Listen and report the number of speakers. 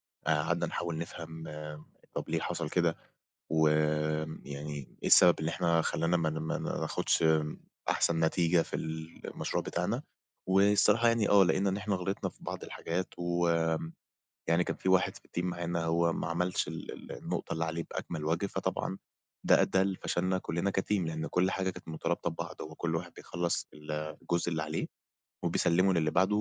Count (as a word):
one